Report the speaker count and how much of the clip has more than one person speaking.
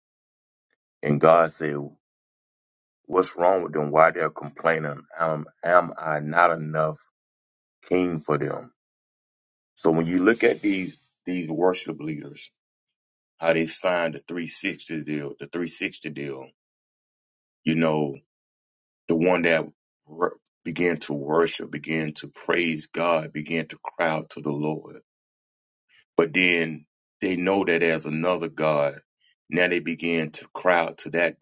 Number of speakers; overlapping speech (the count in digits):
1, no overlap